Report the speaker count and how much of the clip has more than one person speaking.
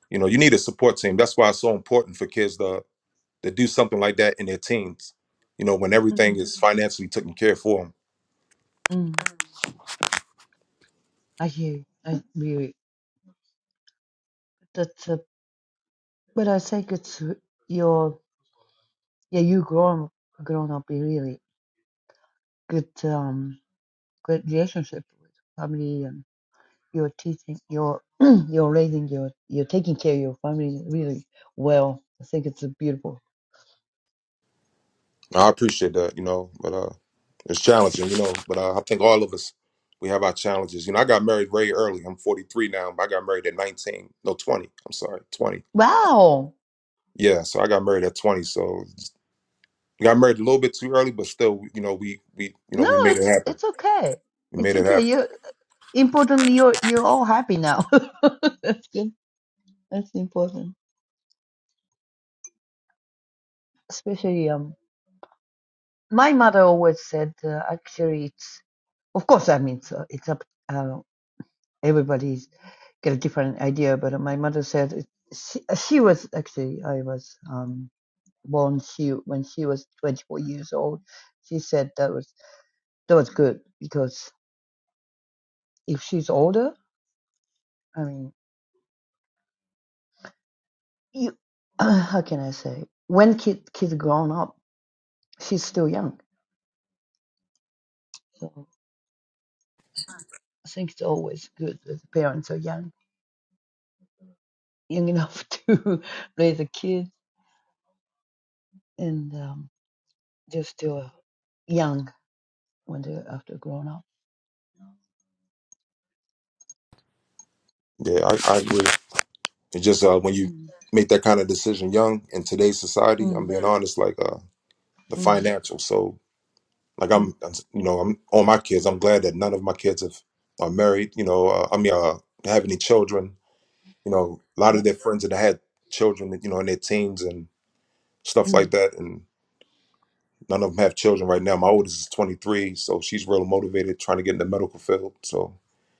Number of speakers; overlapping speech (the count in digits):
2, about 2%